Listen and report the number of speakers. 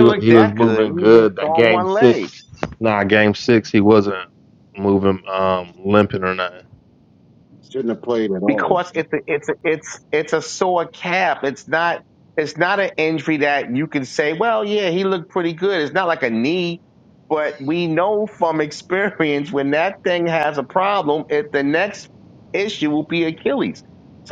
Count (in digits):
3